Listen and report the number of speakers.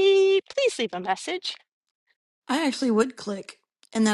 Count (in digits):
2